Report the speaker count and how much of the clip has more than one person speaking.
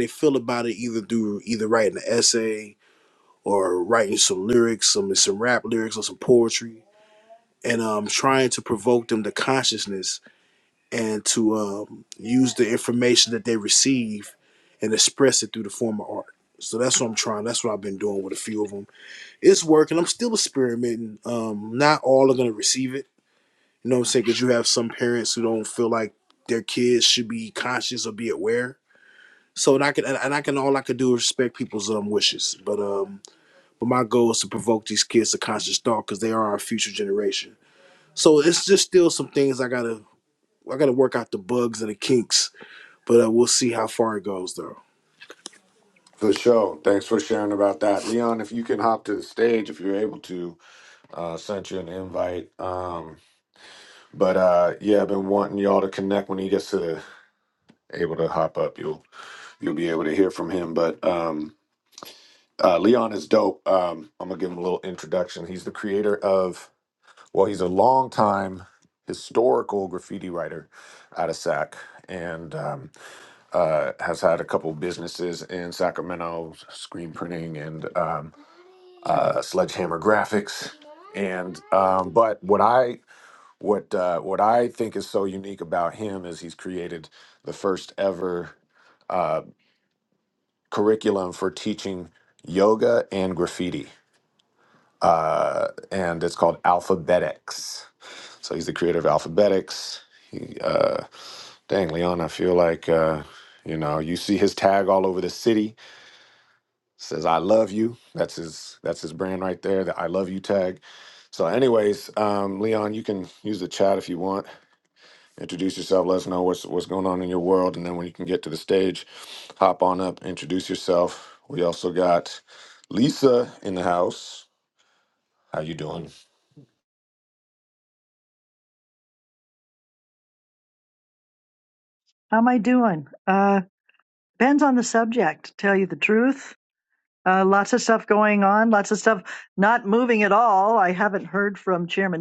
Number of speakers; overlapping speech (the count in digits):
3, no overlap